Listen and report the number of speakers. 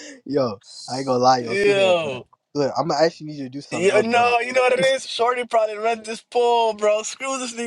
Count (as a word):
two